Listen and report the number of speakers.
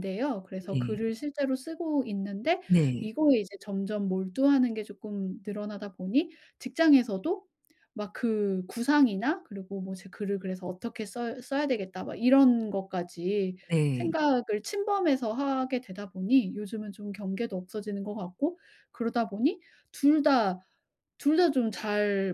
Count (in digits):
2